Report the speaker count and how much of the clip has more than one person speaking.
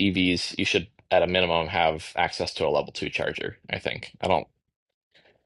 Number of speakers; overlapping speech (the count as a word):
one, no overlap